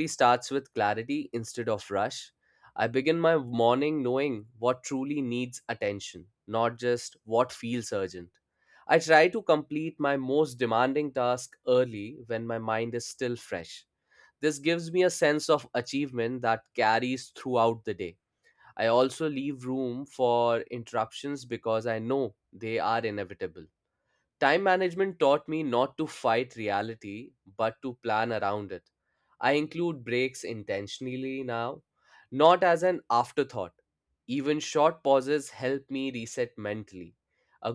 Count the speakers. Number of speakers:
one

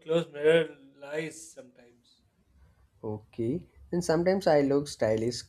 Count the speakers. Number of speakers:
two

